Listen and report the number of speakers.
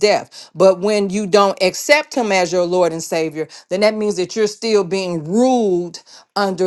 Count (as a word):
one